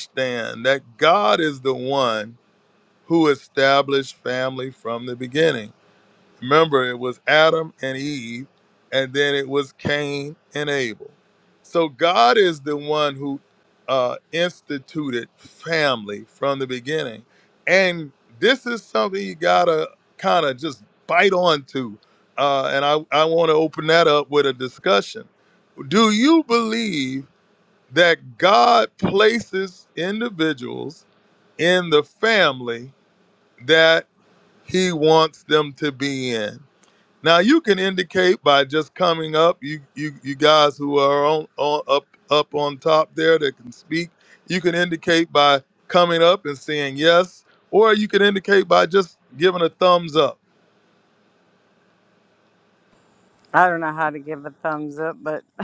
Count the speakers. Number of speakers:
two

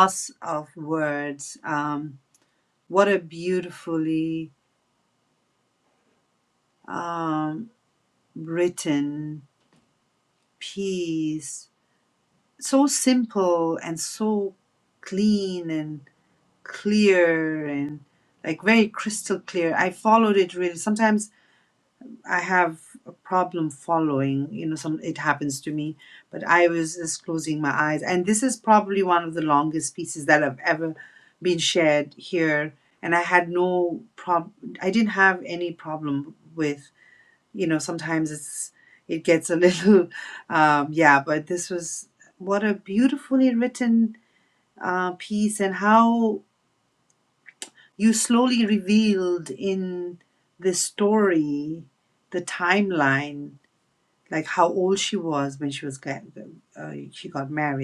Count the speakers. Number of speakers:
one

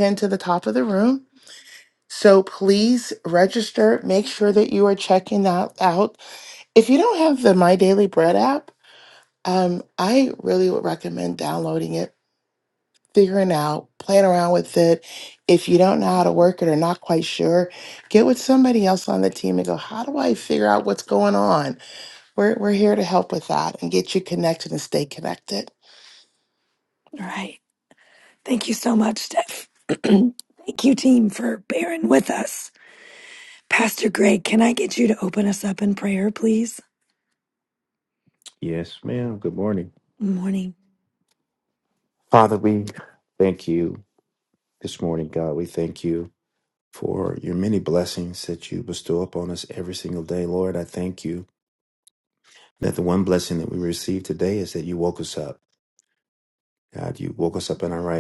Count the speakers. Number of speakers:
three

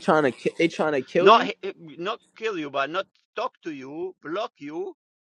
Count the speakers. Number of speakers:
two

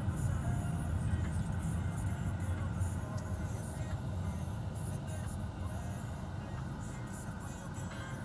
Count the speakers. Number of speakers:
zero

